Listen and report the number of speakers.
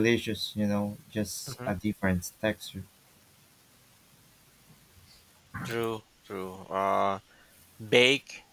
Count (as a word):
two